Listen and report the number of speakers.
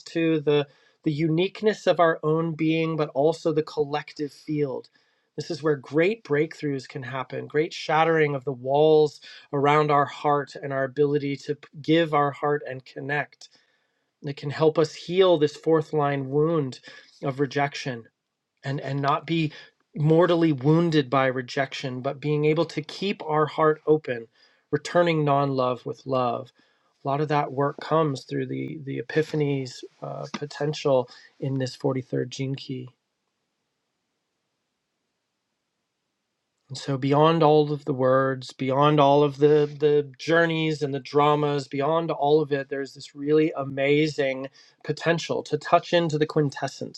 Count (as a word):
one